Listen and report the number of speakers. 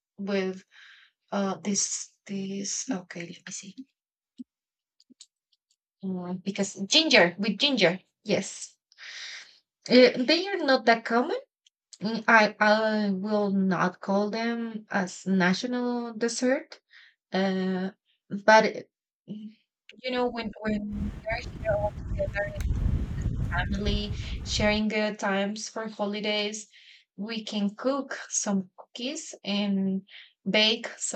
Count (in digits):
1